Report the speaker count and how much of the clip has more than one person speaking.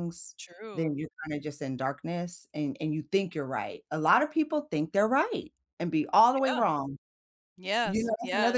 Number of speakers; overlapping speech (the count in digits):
2, about 13%